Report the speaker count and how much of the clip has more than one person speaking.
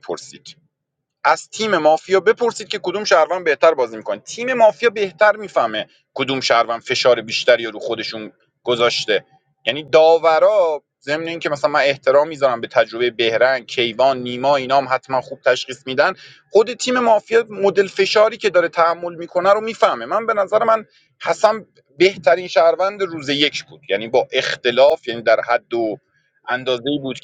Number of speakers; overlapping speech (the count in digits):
1, no overlap